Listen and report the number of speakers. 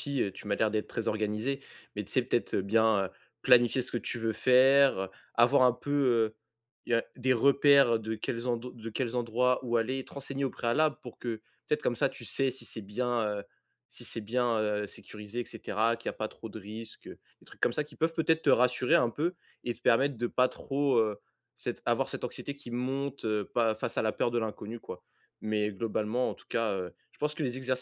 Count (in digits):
1